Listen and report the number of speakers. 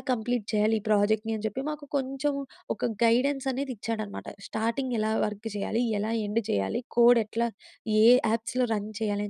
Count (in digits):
1